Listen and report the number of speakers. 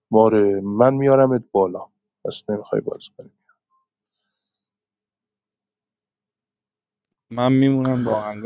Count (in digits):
2